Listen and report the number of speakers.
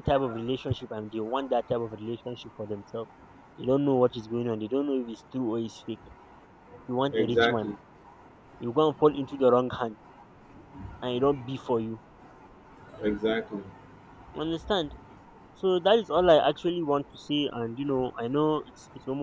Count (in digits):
2